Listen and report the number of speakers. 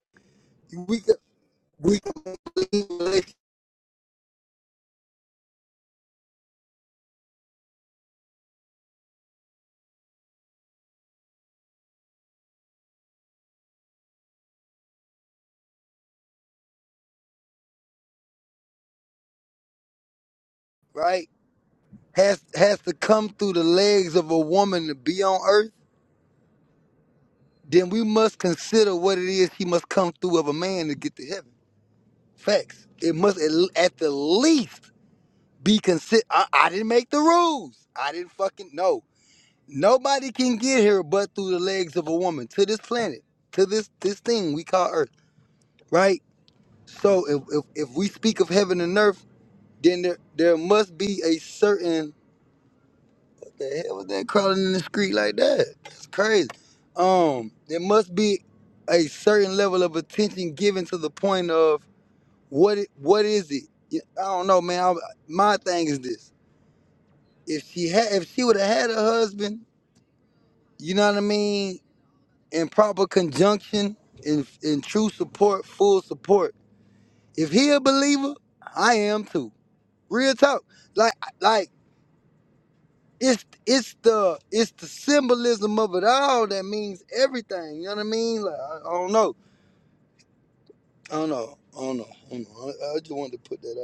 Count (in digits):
1